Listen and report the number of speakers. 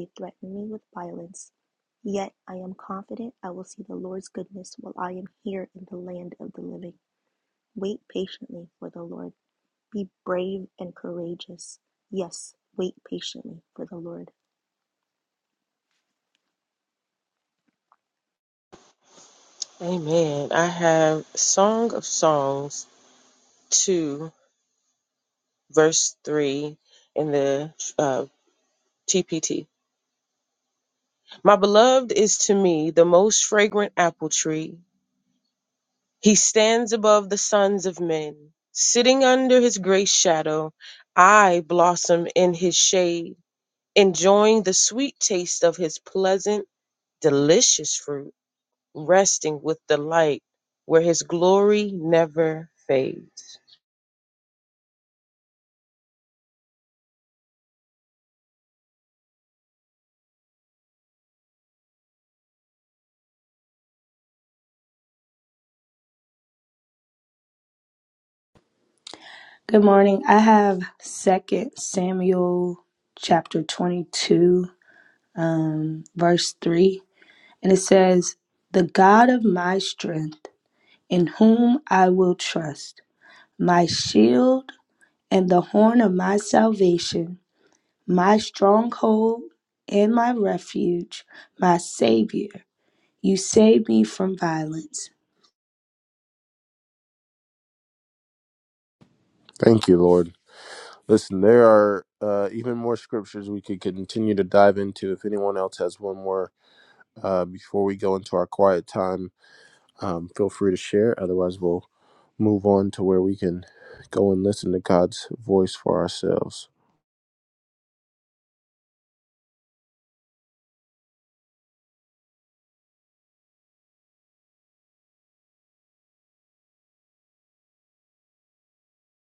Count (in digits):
4